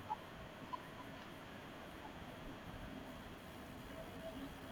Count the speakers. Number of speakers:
0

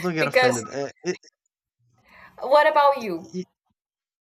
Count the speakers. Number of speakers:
2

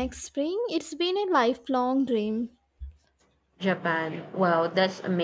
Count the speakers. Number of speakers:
2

